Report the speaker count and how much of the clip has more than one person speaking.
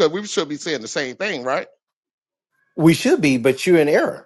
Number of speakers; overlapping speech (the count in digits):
2, no overlap